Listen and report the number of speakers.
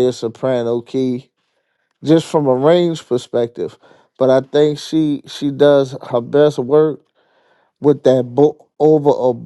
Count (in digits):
1